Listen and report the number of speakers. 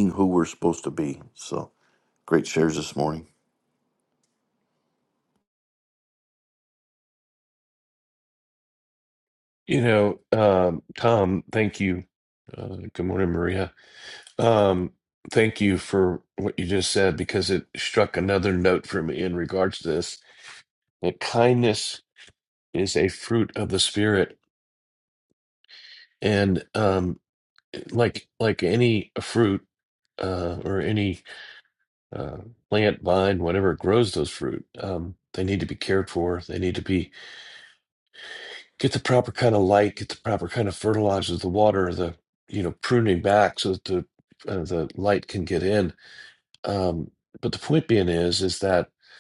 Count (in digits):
2